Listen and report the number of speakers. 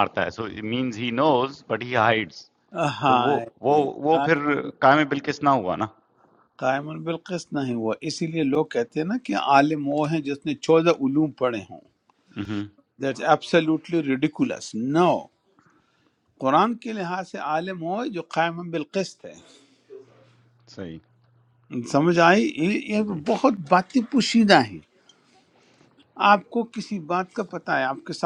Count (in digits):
2